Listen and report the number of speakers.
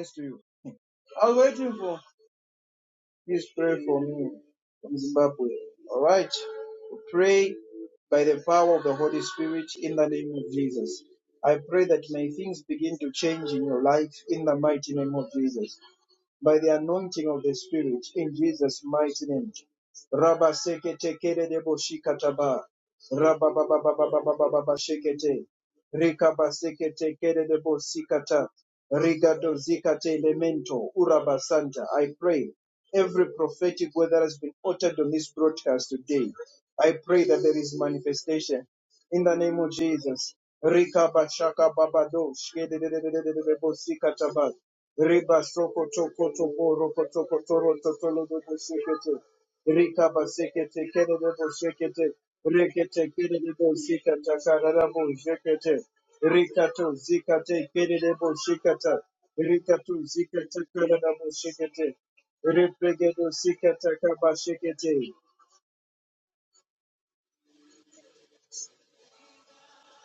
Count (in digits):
1